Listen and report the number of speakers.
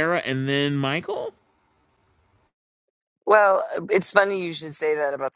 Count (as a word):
two